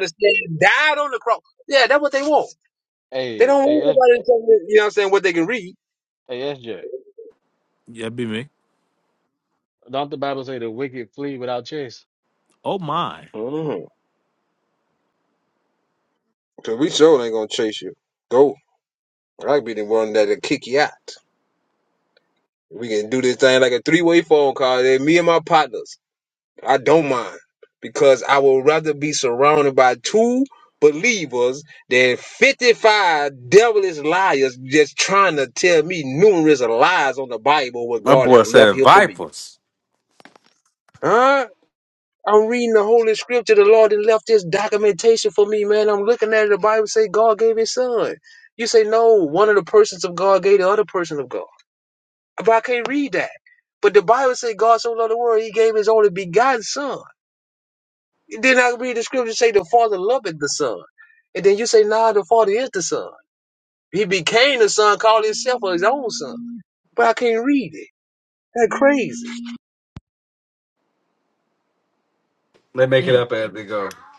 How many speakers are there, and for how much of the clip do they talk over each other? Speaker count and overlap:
four, about 3%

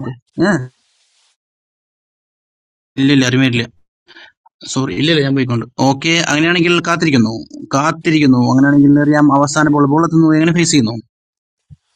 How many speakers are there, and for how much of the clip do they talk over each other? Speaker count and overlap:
one, no overlap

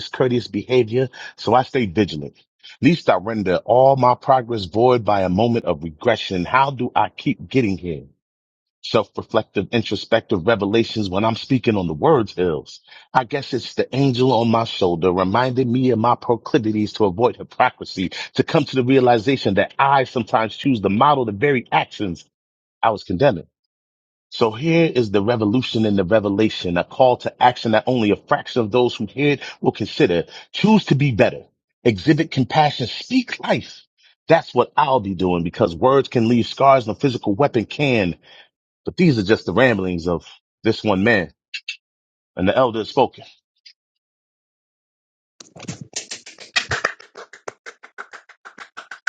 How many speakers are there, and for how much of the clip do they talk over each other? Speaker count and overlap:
one, no overlap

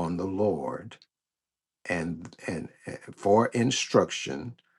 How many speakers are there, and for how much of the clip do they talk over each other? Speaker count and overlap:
one, no overlap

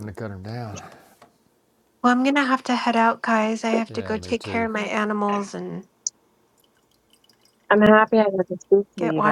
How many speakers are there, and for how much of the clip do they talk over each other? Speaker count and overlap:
three, about 13%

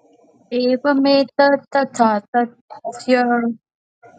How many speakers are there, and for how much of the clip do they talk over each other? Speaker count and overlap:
one, no overlap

